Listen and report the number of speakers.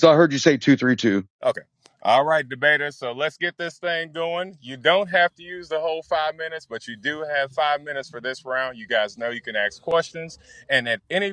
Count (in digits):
2